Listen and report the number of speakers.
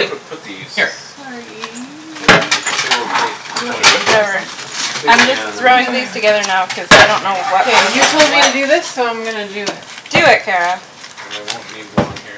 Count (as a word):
four